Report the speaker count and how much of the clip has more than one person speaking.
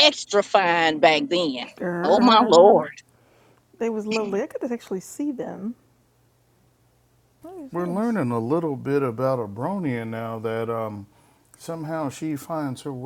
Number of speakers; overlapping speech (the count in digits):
3, about 8%